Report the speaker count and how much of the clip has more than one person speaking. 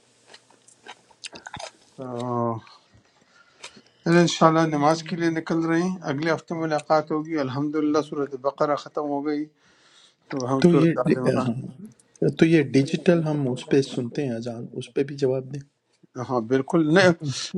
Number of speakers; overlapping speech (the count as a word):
two, about 5%